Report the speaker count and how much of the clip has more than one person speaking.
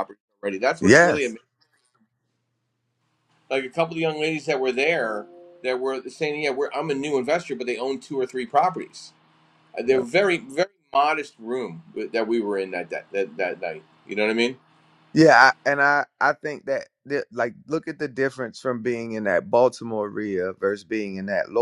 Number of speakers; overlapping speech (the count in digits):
2, about 2%